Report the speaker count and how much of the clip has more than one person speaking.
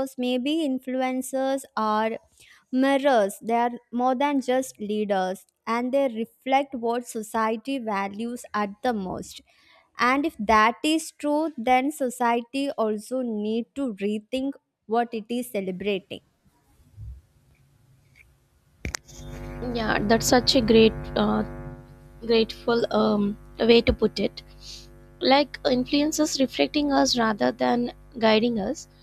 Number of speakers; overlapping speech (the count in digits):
2, no overlap